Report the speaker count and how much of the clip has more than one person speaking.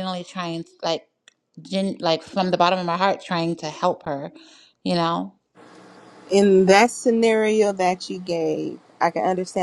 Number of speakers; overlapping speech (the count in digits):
2, no overlap